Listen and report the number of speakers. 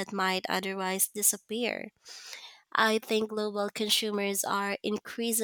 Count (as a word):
one